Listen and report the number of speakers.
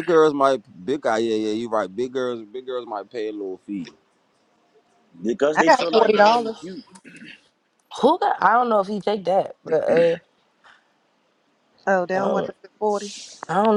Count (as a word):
four